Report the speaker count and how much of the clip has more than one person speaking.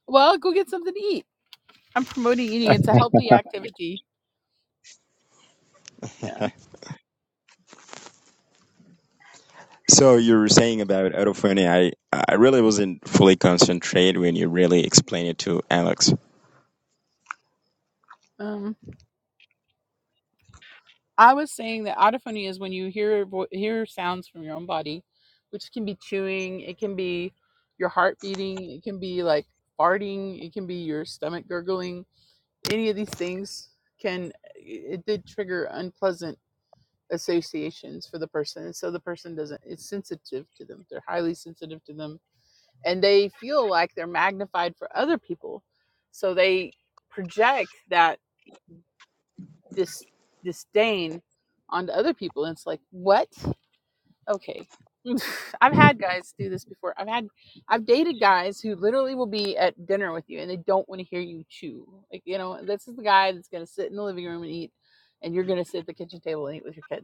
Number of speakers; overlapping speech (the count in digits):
2, no overlap